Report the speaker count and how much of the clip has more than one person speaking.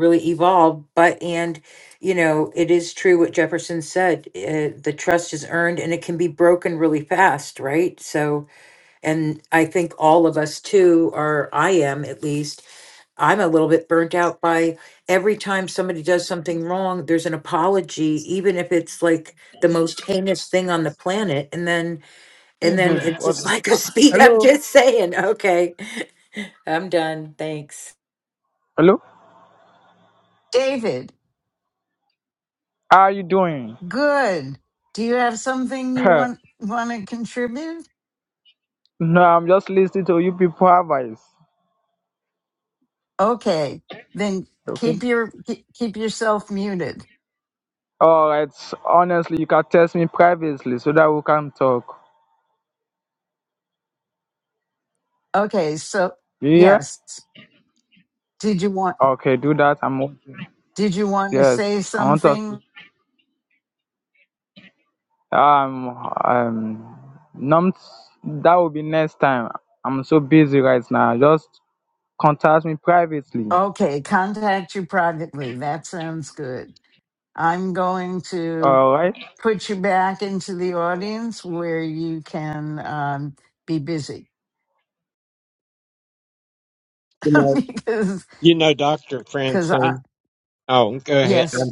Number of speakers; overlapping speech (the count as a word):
four, about 4%